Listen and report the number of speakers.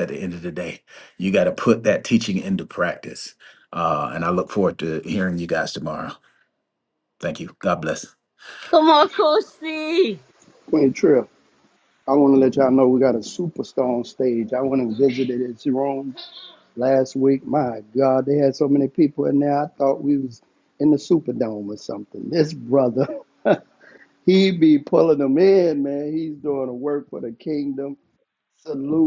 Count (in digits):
3